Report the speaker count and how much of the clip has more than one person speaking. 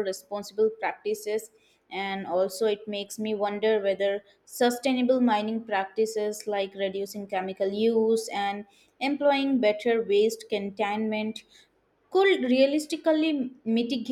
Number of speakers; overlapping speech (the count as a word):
one, no overlap